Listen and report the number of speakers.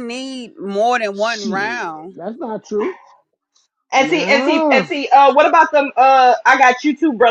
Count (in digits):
3